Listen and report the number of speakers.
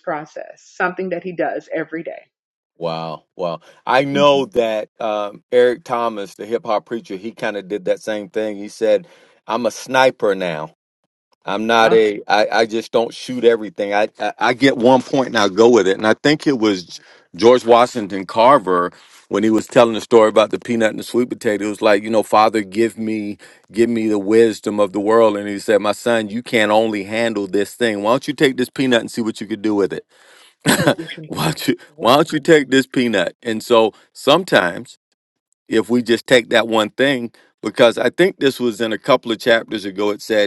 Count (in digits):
2